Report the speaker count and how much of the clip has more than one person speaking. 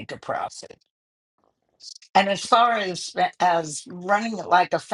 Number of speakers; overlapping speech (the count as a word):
one, no overlap